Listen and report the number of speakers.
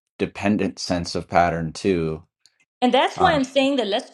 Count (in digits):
2